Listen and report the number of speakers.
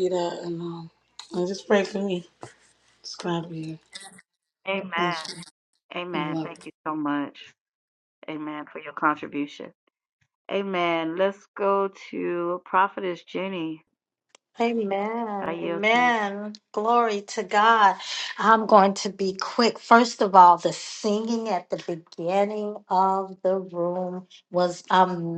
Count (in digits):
3